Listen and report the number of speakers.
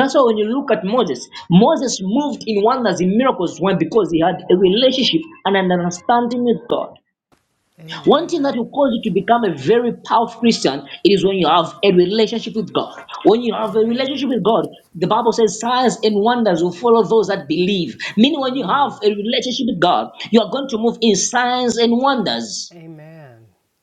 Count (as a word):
two